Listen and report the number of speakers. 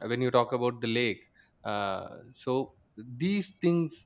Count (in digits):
1